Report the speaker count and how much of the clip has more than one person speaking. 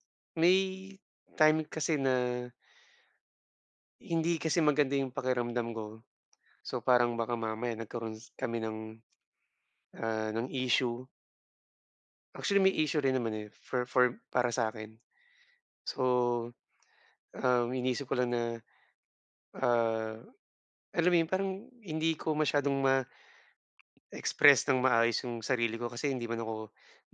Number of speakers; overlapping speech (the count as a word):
one, no overlap